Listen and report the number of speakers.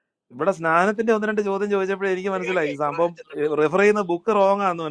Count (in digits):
1